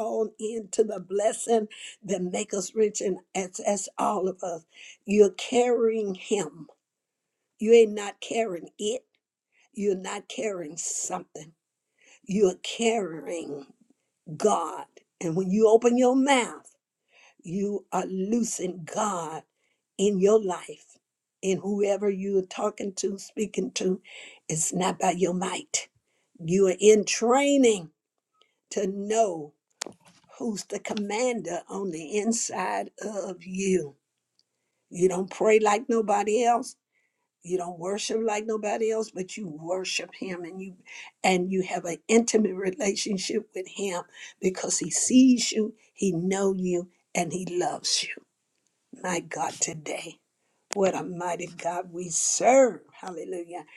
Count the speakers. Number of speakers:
one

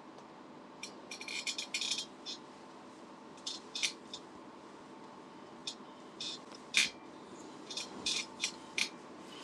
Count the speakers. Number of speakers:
zero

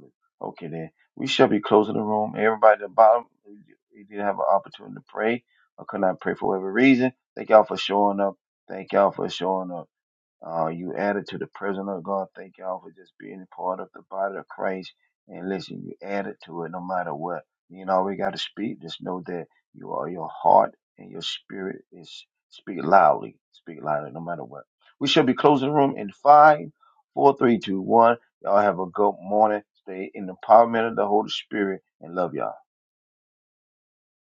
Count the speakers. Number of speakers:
one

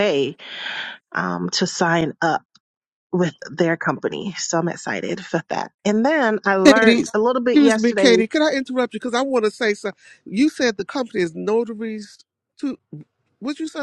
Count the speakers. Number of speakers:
two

